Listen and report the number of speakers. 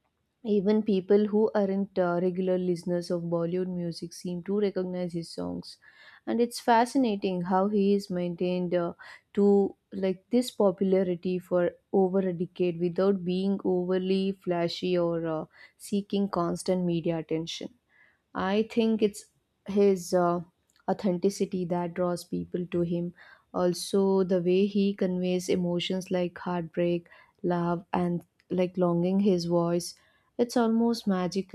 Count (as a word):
one